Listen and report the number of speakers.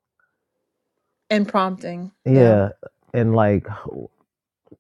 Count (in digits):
2